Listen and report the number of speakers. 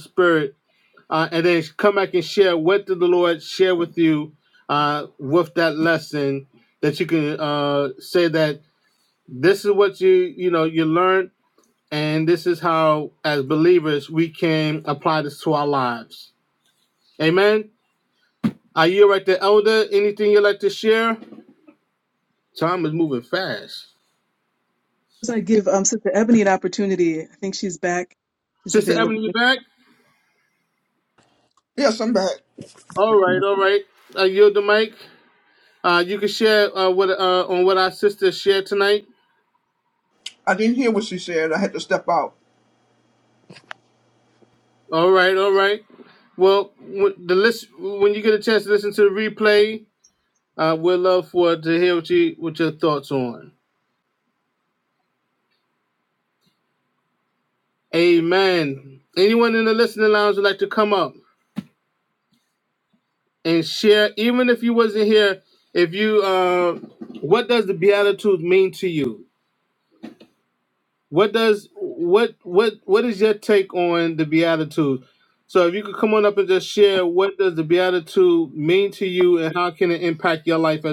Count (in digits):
3